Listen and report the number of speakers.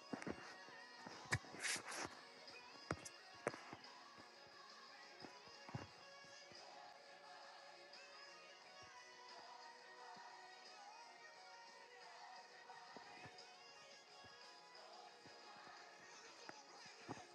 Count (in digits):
0